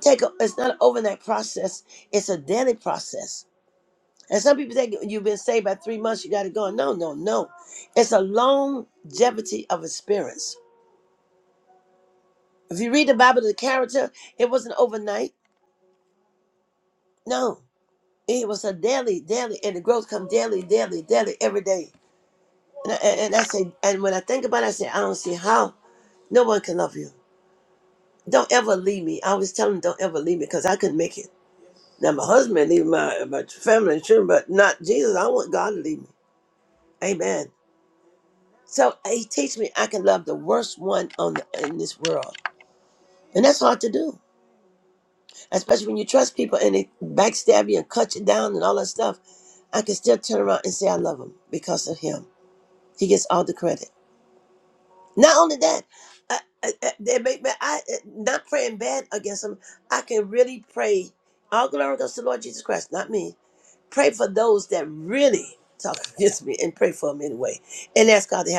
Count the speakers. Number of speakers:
1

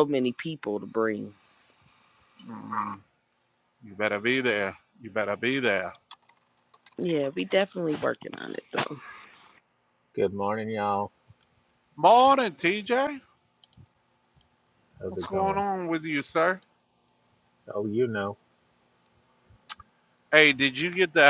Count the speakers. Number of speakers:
3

